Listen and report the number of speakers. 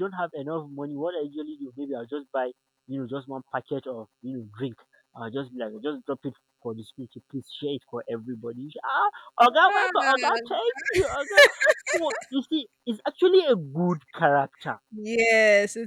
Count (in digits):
2